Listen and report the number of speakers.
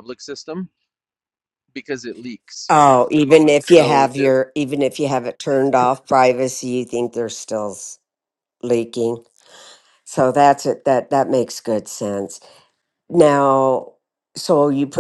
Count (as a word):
two